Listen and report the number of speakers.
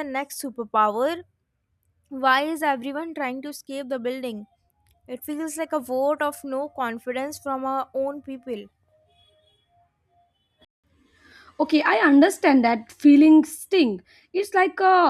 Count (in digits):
2